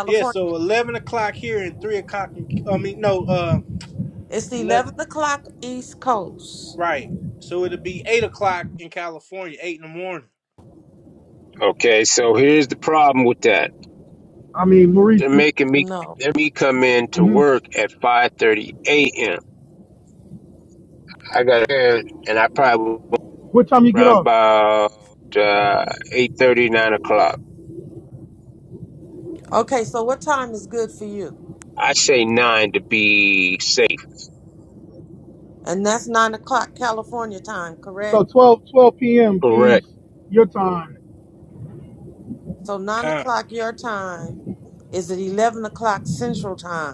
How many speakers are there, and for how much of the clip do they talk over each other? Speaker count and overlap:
4, about 5%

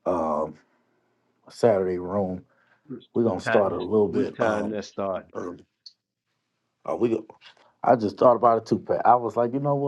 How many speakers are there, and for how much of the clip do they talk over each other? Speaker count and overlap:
2, about 16%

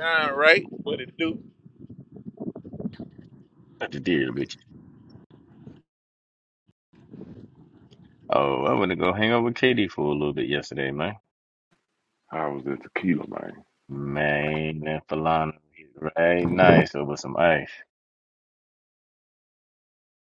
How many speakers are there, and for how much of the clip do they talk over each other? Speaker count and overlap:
3, no overlap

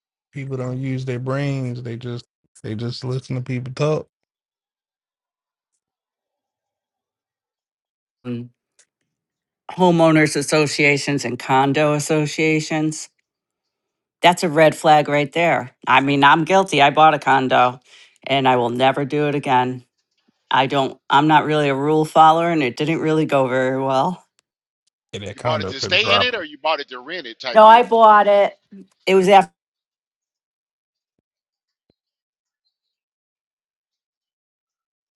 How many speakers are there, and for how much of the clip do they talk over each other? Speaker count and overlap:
3, about 4%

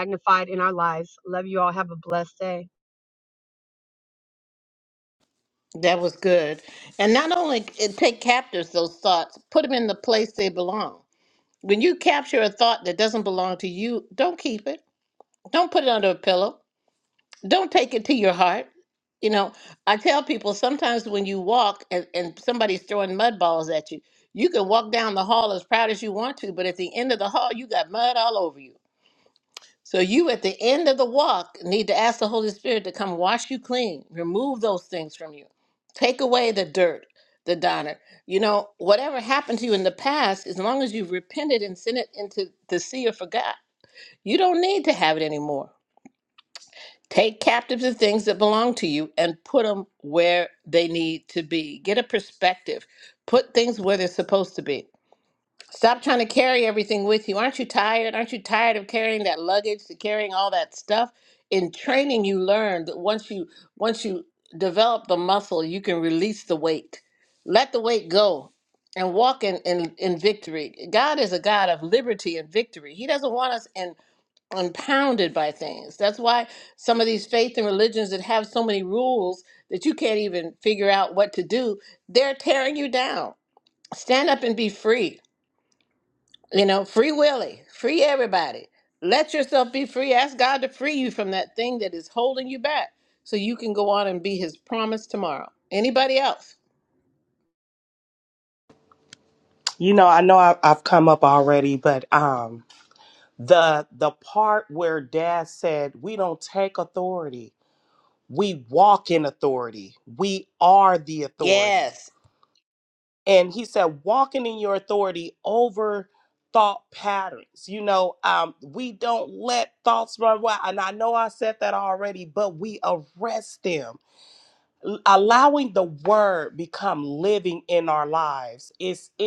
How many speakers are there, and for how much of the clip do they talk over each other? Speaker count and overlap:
3, under 1%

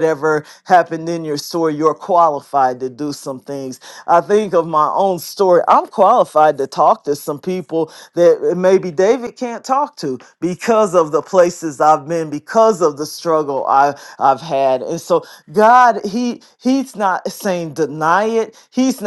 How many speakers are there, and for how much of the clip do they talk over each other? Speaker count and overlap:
1, no overlap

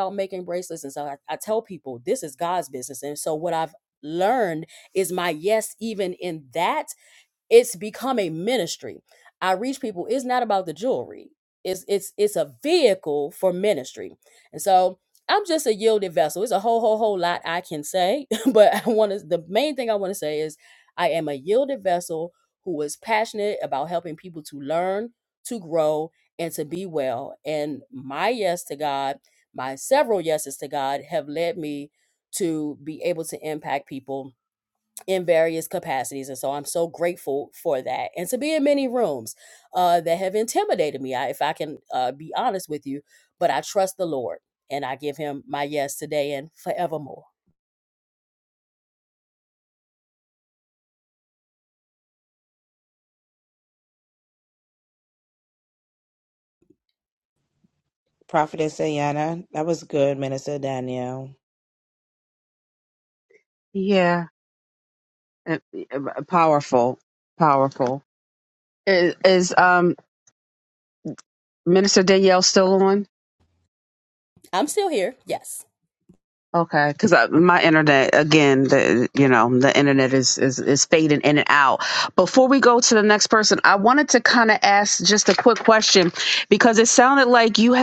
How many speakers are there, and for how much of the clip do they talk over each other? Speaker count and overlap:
3, no overlap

